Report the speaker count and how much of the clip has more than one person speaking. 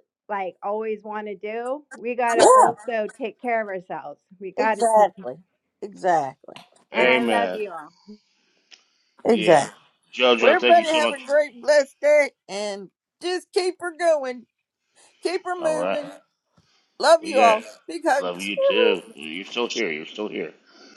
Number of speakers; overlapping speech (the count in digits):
3, about 21%